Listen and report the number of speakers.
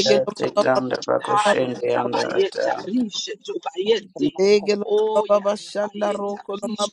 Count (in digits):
3